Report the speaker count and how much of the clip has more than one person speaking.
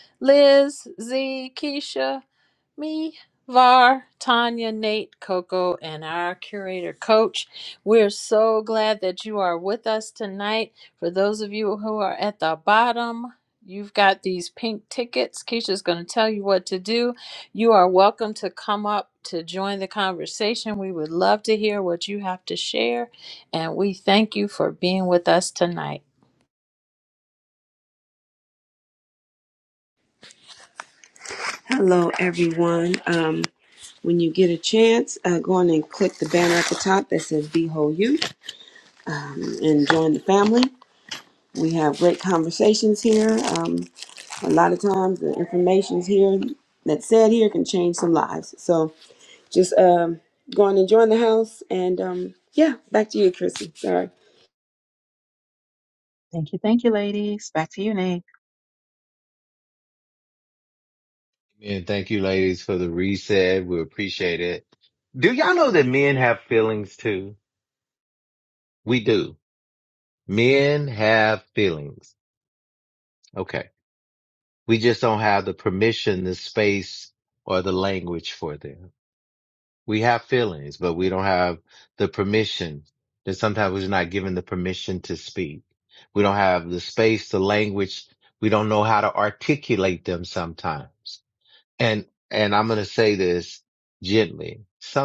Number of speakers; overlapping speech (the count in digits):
4, no overlap